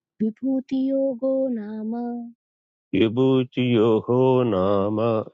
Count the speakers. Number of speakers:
2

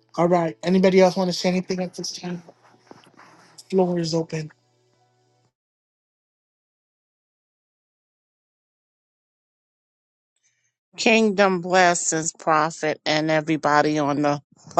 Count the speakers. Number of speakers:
2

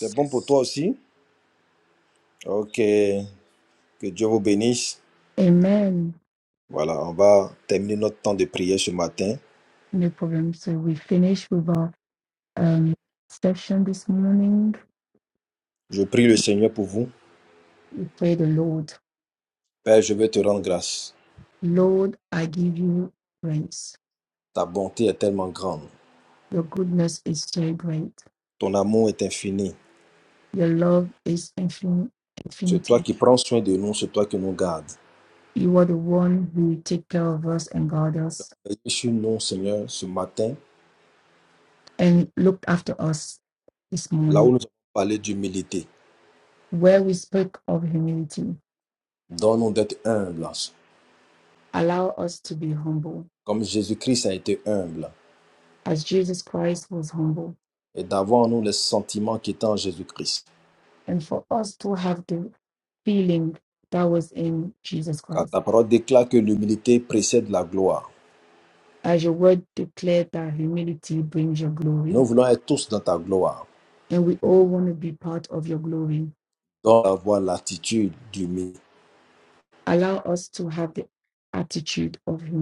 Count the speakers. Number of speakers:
2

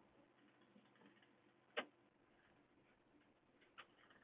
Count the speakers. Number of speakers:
0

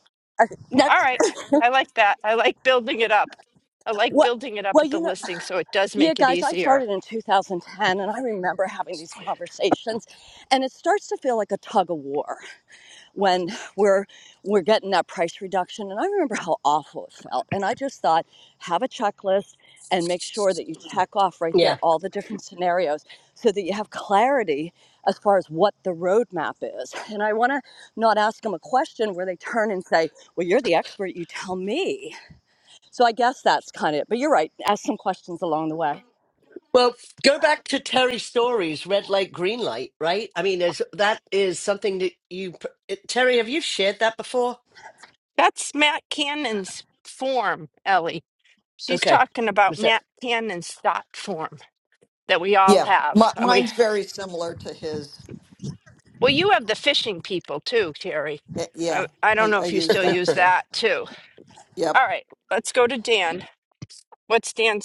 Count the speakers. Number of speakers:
4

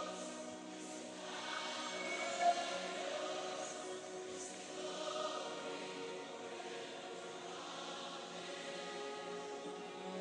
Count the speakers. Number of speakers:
0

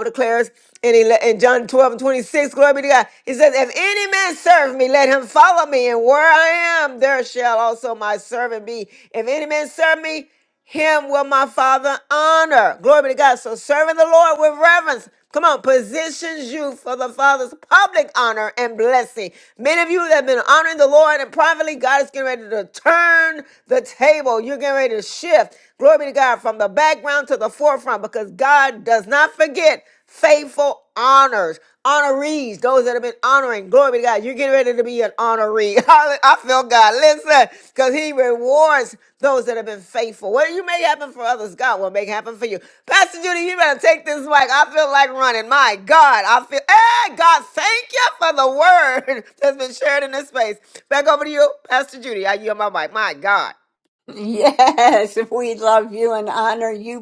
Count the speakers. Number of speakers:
2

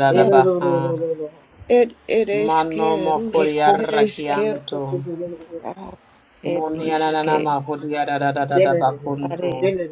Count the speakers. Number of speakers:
3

